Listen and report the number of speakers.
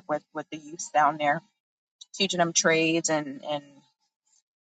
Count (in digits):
1